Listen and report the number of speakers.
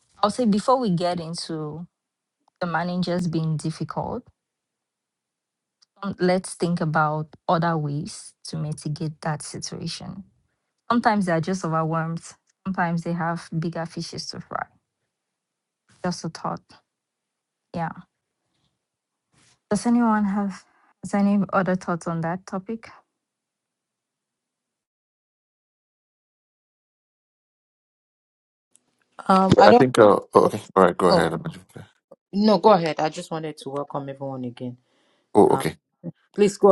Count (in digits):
3